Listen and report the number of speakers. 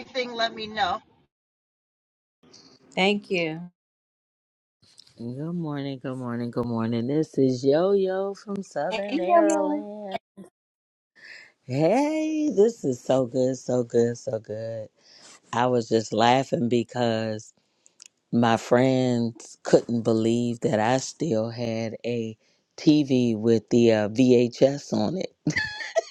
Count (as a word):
three